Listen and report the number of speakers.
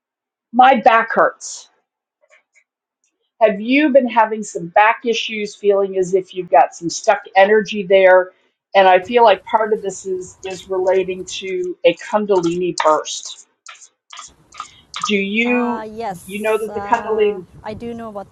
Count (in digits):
2